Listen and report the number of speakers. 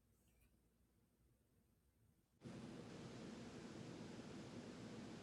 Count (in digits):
0